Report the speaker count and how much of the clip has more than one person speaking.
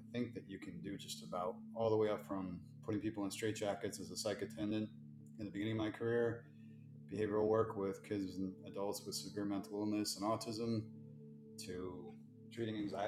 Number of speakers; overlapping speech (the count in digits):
1, no overlap